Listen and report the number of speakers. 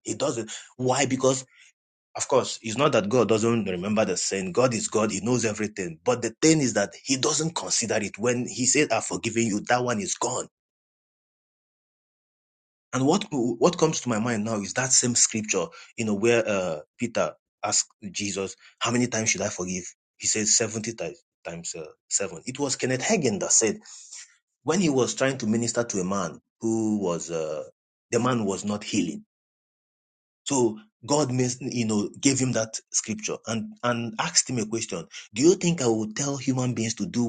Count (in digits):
1